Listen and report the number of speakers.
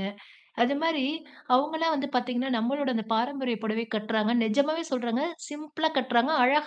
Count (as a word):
one